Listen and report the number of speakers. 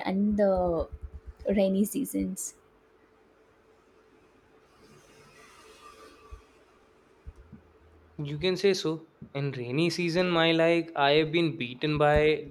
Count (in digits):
2